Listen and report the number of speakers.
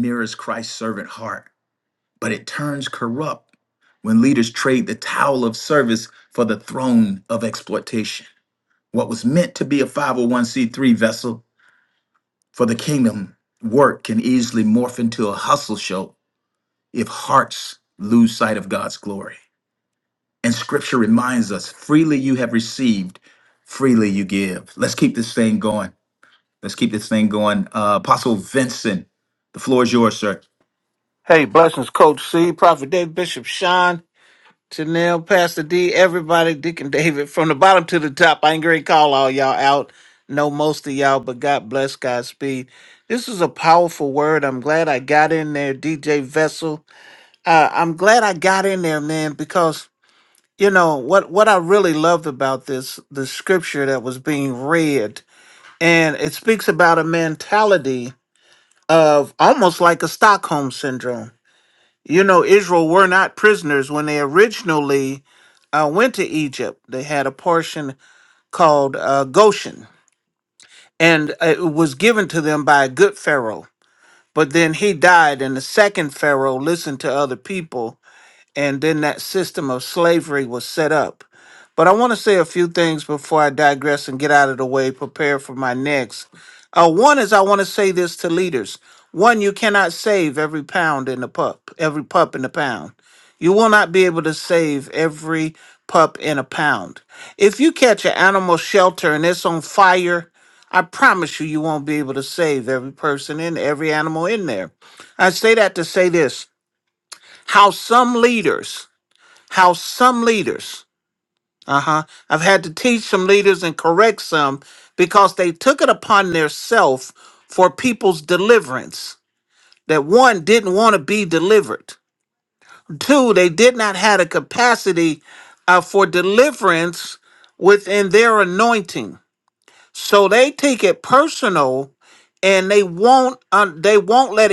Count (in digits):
2